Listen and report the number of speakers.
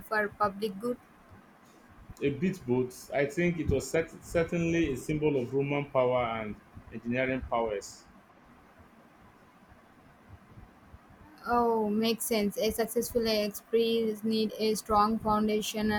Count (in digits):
2